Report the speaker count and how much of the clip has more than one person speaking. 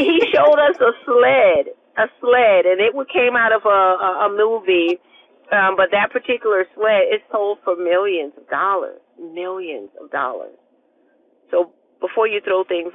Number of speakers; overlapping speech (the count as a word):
one, no overlap